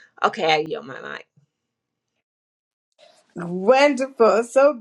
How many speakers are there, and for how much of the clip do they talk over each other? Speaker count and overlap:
two, no overlap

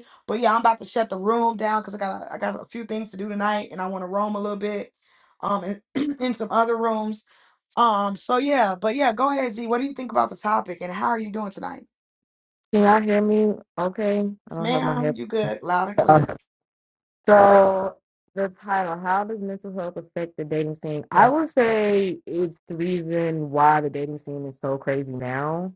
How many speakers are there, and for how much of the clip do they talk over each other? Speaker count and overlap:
two, about 3%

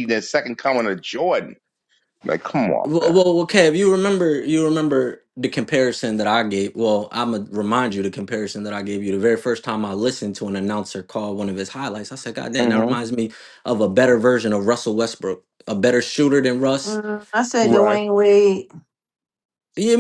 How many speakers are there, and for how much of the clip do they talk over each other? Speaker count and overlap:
three, about 6%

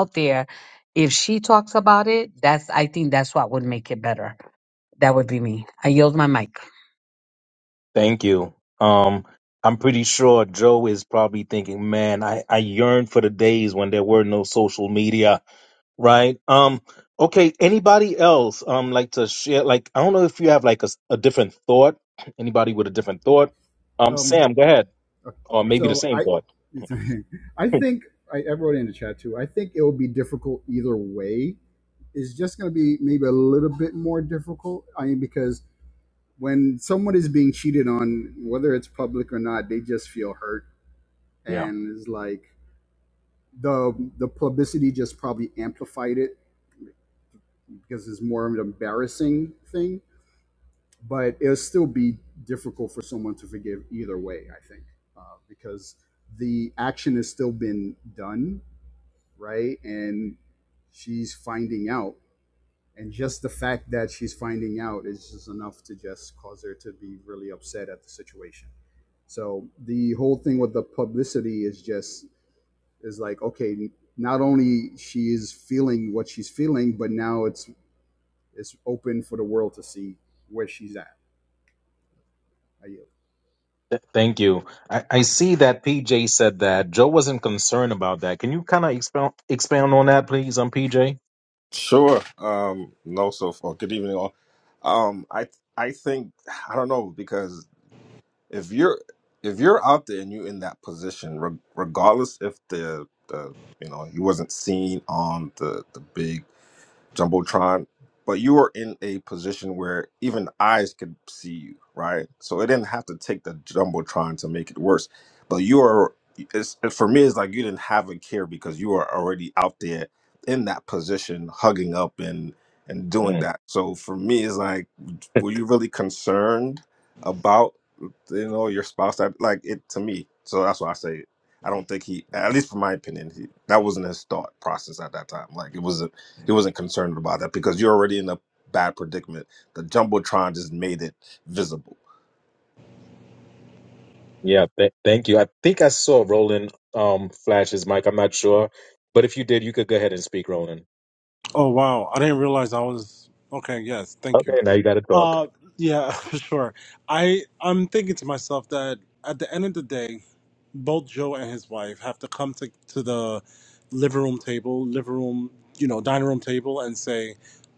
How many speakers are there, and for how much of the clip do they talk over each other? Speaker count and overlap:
five, about 1%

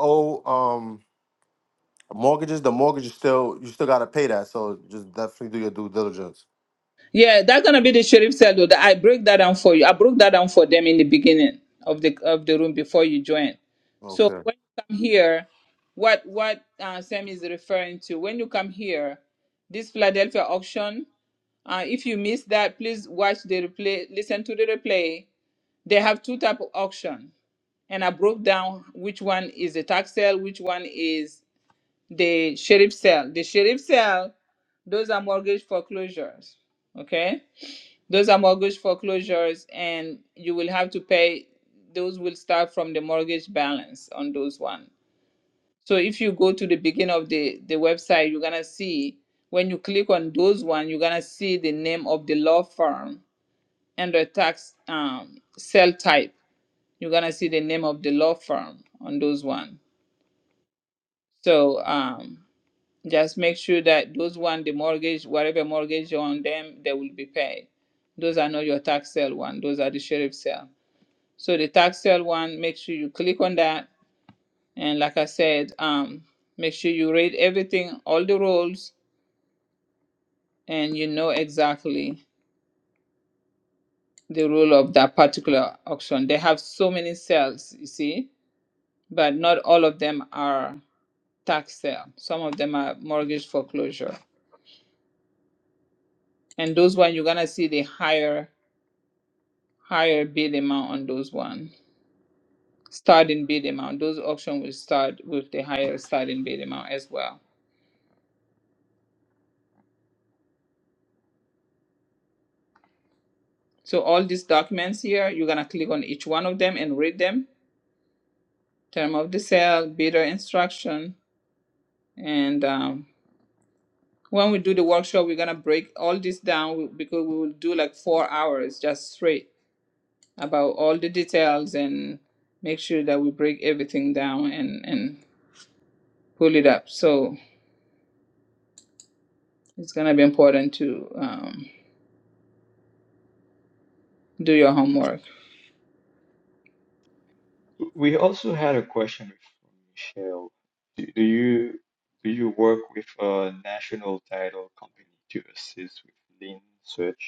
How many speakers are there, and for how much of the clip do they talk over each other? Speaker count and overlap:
three, under 1%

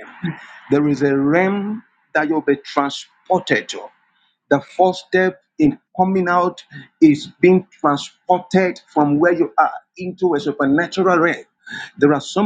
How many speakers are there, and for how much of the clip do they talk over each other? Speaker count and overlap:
one, no overlap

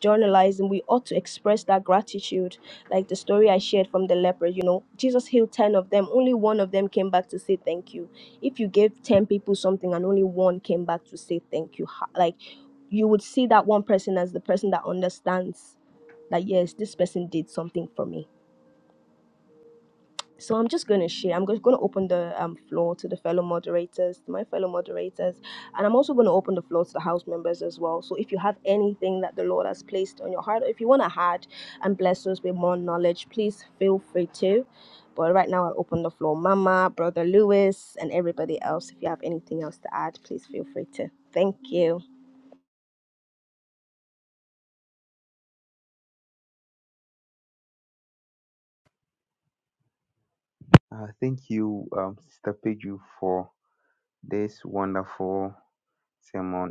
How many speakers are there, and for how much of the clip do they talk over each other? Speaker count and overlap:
two, no overlap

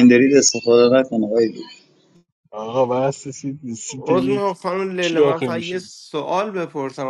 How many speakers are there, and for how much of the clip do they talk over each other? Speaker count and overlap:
three, about 16%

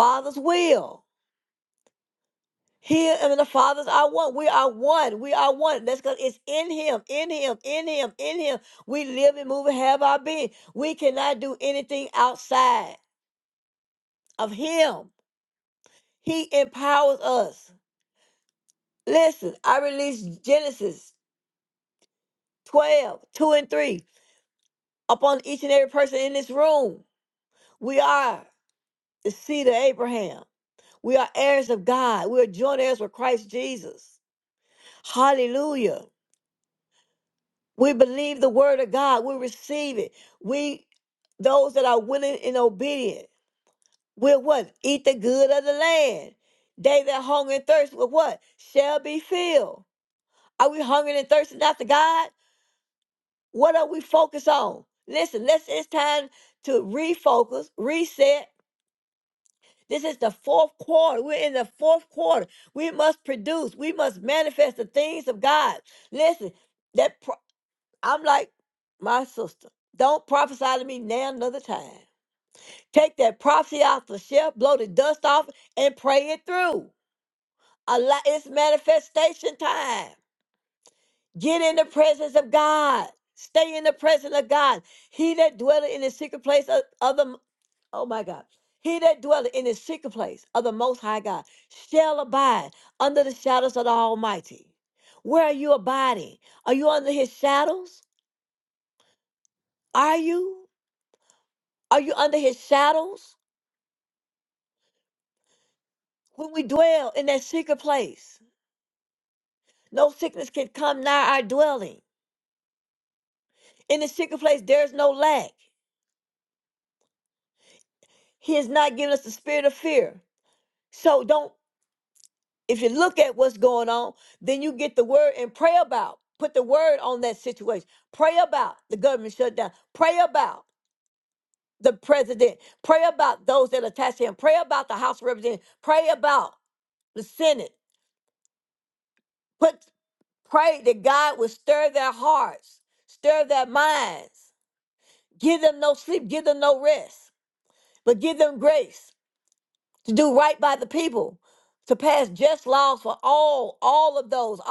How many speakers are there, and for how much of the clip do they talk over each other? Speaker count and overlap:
one, no overlap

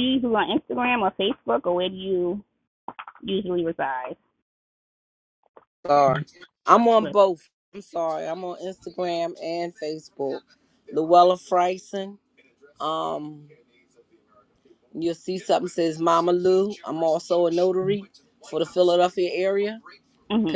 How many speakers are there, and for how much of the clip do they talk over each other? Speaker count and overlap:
two, about 1%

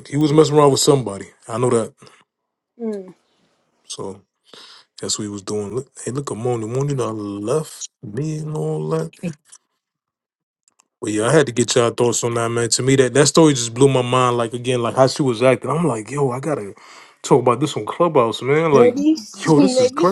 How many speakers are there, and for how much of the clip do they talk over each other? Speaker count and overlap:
two, about 5%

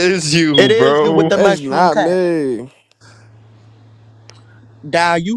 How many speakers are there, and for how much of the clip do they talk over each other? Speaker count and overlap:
three, about 30%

